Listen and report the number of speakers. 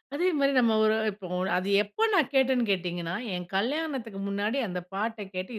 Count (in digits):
1